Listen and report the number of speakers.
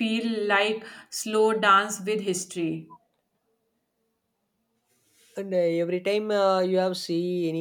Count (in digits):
2